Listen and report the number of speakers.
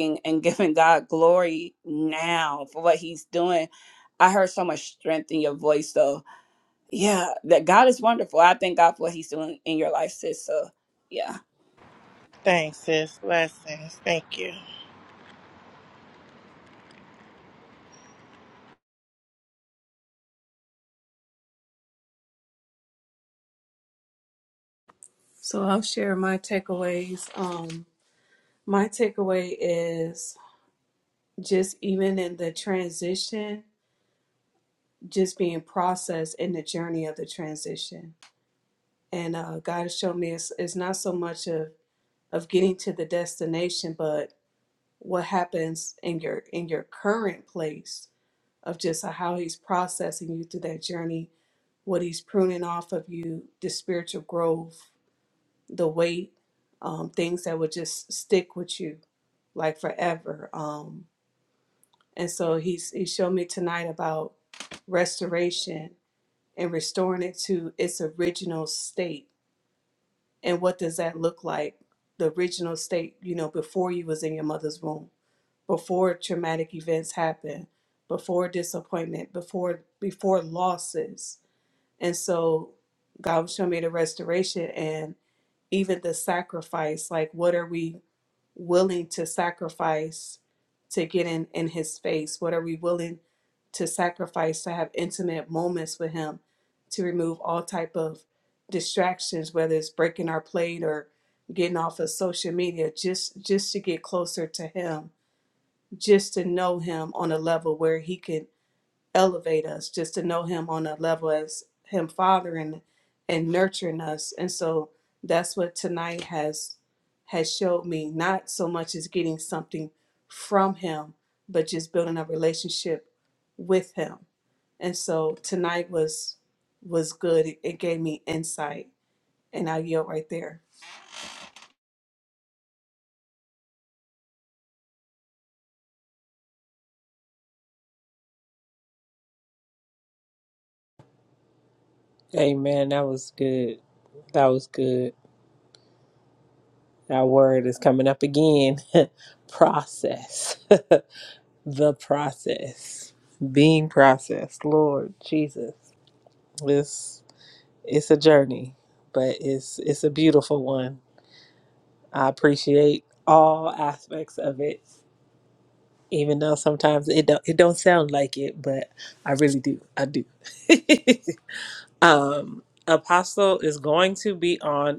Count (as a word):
four